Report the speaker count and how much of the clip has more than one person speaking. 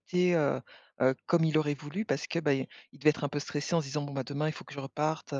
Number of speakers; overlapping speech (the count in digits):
1, no overlap